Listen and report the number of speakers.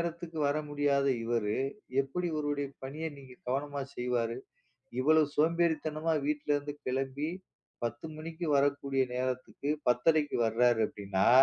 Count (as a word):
one